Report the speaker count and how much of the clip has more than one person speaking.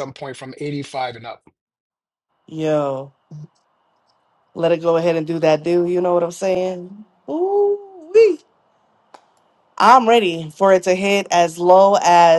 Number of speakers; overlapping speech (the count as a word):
two, no overlap